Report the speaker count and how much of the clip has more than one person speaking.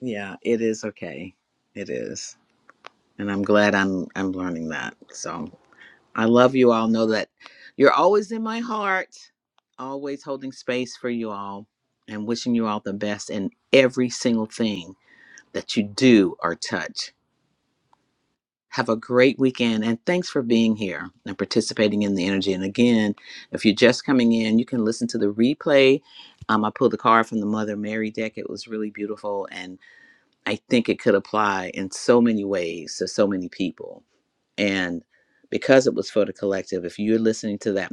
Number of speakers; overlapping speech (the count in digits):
1, no overlap